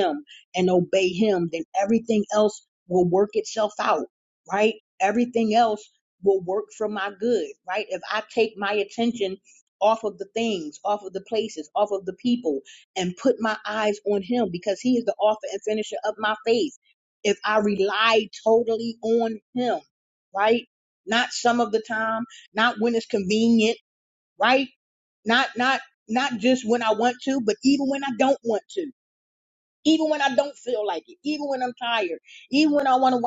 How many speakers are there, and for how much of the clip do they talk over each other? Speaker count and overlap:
1, no overlap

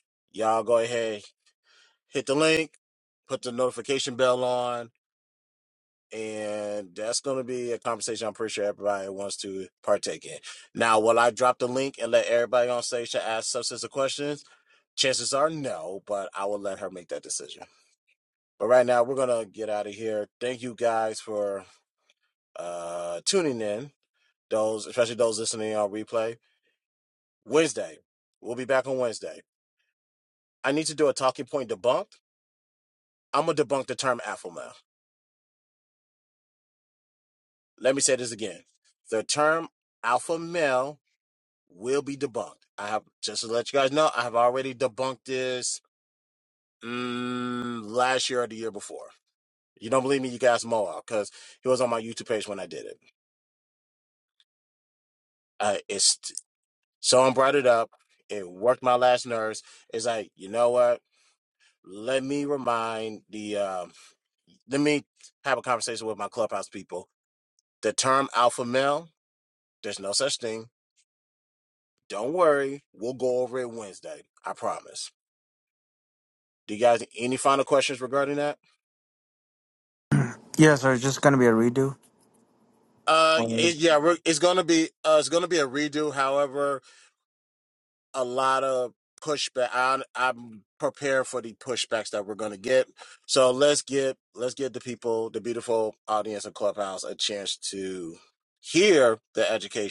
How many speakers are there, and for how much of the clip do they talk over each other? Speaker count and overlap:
2, no overlap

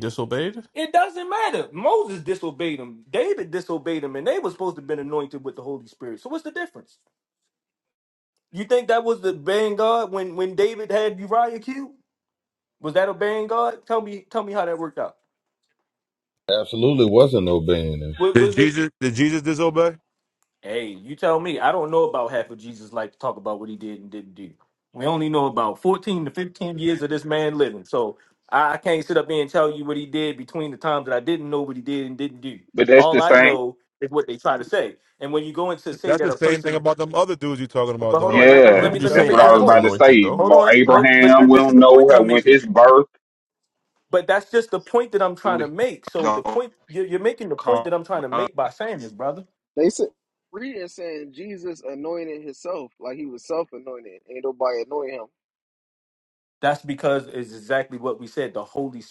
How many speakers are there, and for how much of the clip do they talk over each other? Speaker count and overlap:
6, about 12%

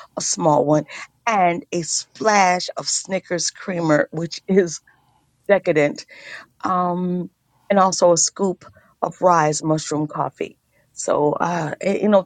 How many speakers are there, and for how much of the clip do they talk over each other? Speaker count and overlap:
1, no overlap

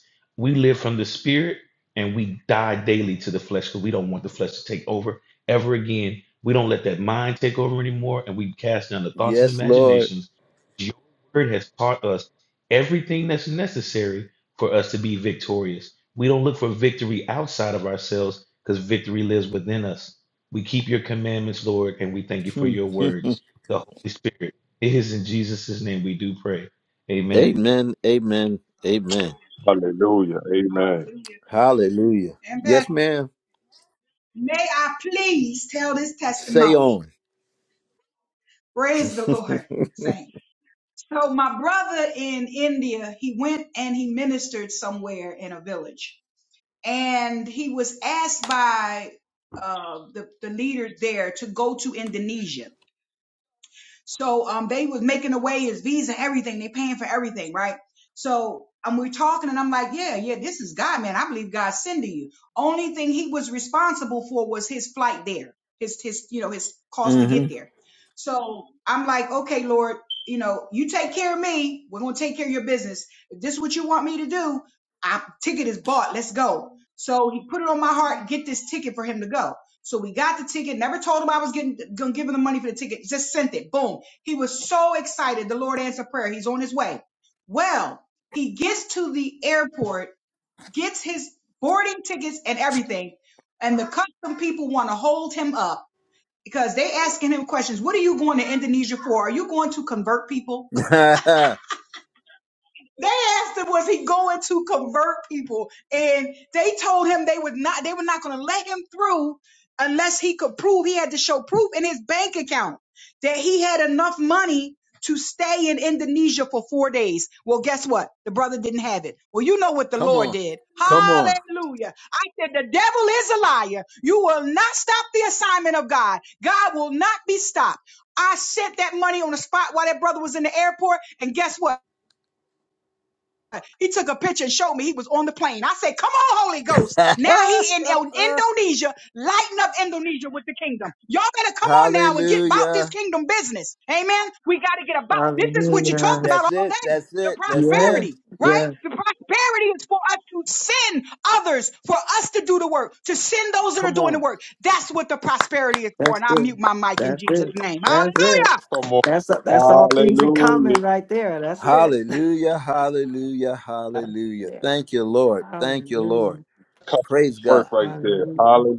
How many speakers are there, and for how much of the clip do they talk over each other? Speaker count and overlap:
5, about 8%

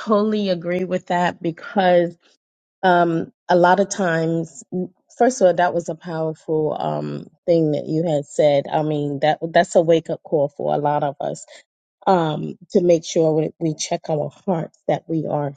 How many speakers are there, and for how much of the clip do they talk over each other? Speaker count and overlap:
1, no overlap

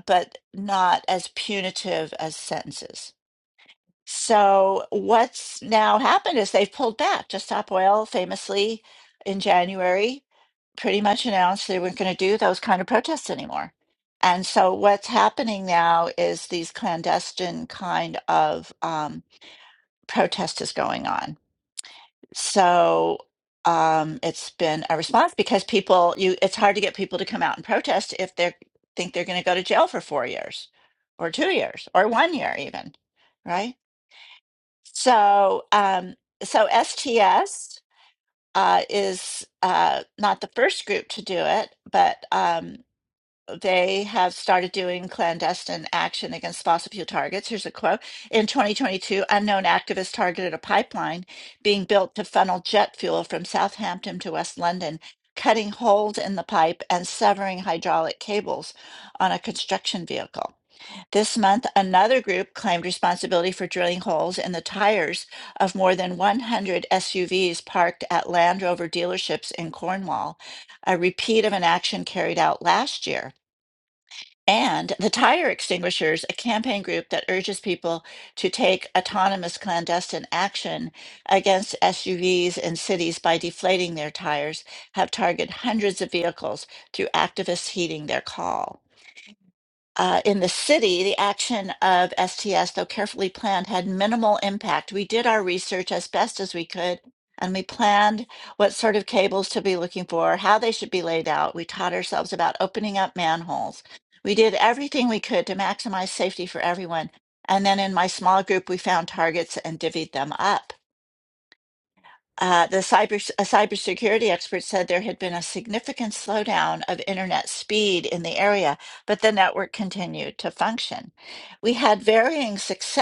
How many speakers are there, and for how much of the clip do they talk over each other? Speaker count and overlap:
1, no overlap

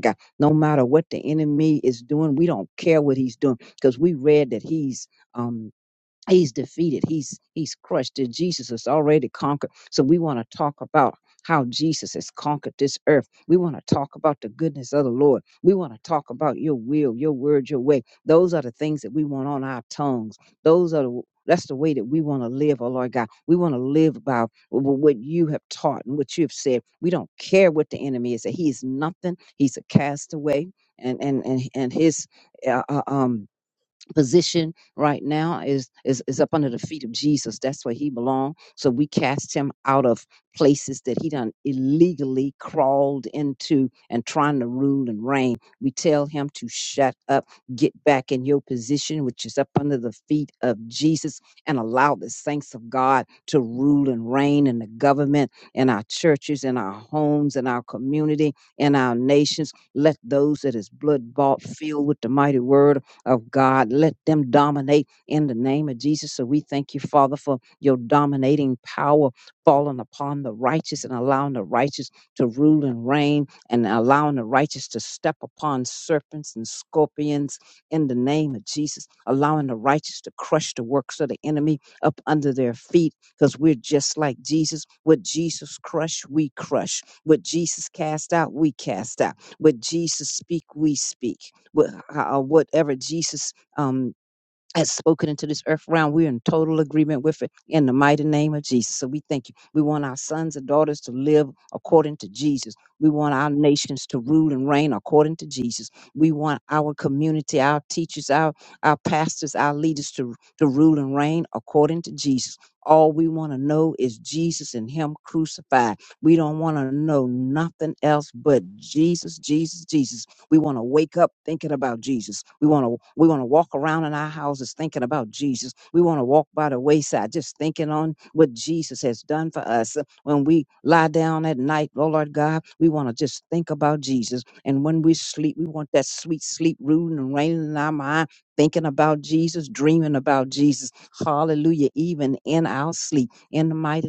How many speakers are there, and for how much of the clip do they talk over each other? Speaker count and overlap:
1, no overlap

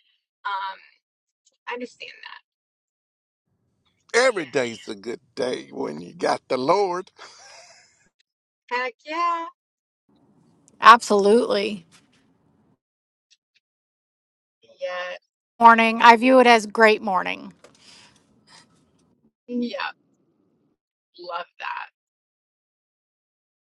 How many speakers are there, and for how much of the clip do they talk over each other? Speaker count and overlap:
3, no overlap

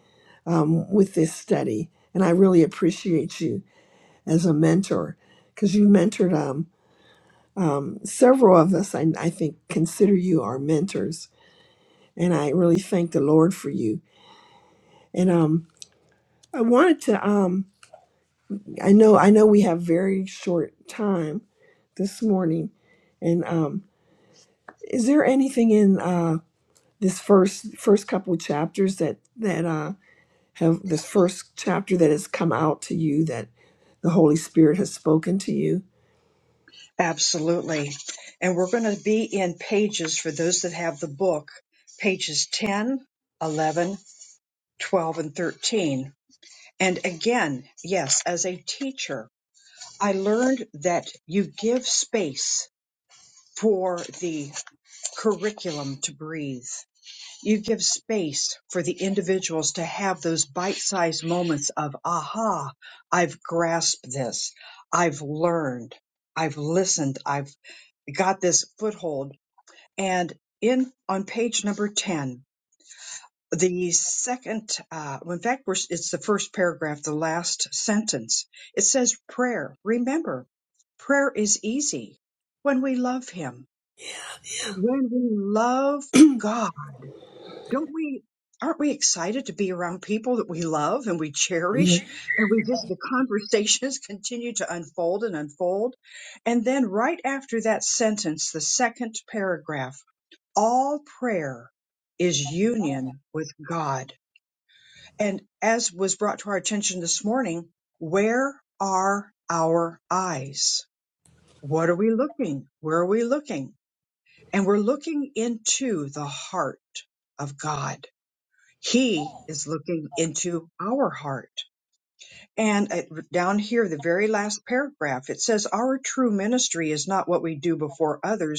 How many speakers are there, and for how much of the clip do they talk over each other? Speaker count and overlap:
2, under 1%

